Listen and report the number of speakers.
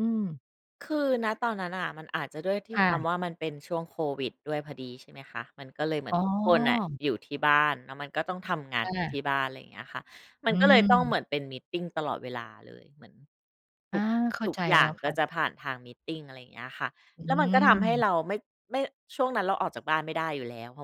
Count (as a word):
two